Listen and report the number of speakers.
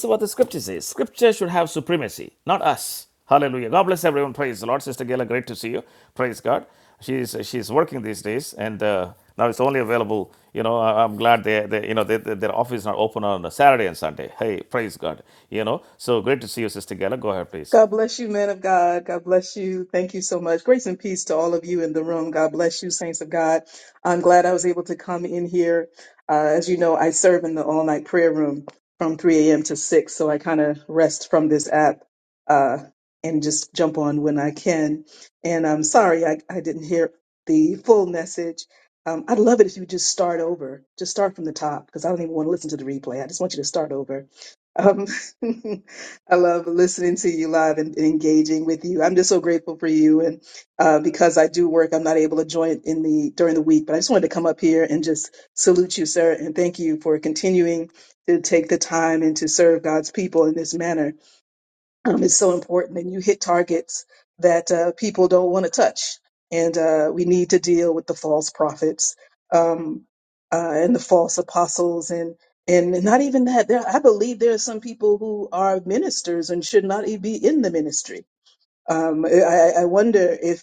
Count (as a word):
two